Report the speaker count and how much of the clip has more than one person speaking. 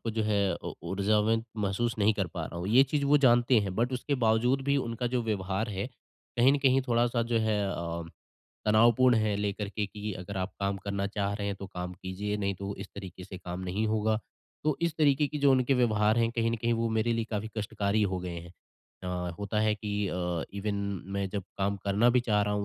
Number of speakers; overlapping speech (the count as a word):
one, no overlap